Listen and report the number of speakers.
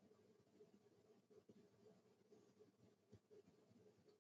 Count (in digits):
0